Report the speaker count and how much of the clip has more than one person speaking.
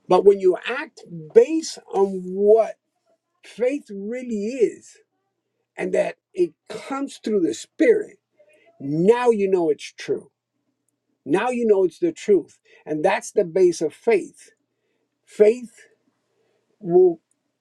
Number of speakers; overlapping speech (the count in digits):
1, no overlap